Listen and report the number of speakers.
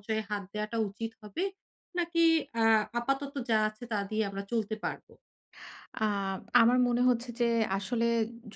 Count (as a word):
two